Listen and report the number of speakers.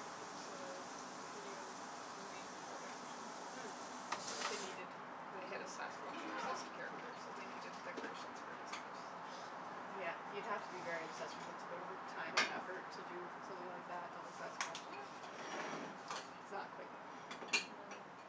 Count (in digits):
2